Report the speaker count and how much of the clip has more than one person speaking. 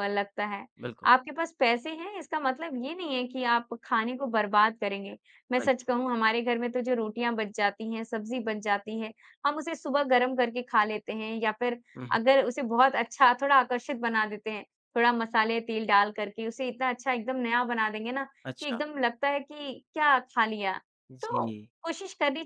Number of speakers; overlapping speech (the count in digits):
2, about 3%